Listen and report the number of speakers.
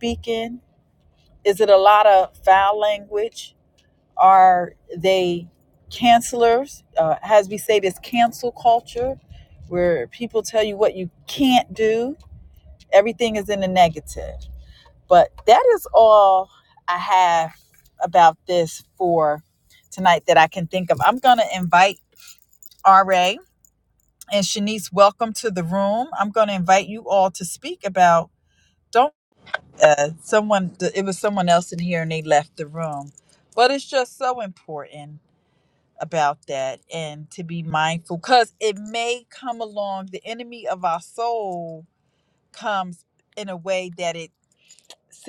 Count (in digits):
1